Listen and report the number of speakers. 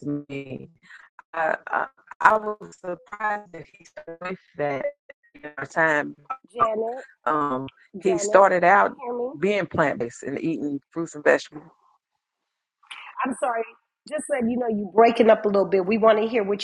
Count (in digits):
2